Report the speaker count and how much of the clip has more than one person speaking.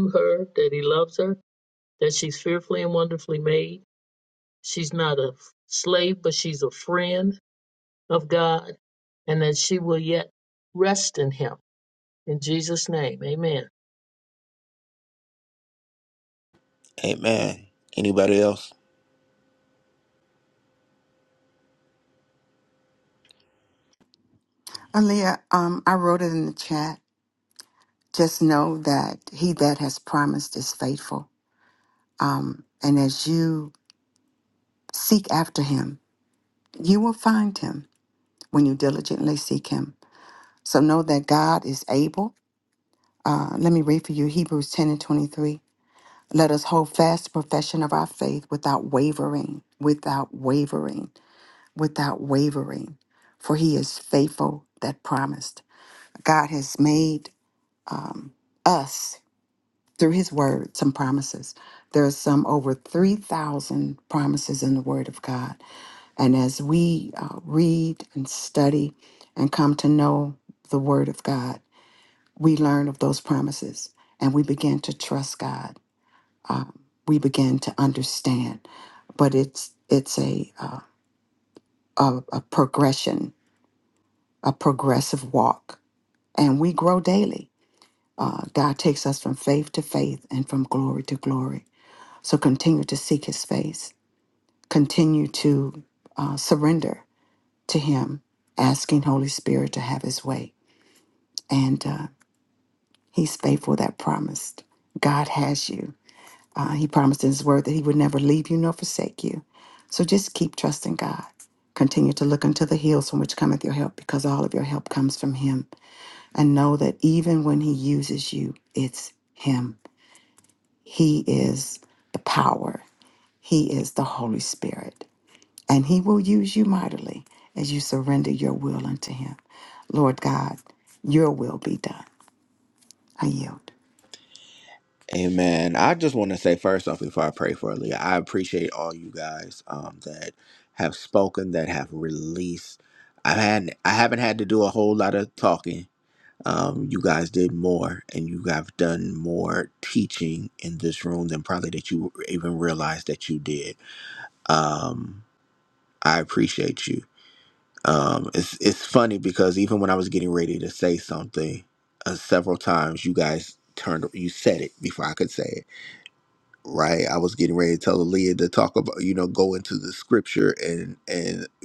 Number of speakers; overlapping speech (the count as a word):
three, no overlap